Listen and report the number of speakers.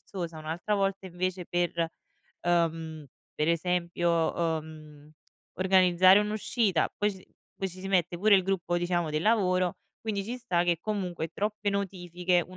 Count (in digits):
1